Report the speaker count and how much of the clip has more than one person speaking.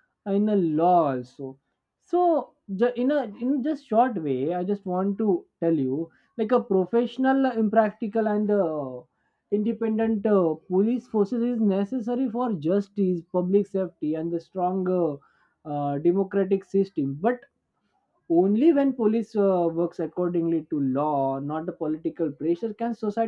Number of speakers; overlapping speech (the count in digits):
1, no overlap